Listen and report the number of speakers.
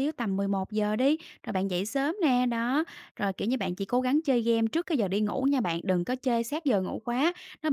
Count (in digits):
1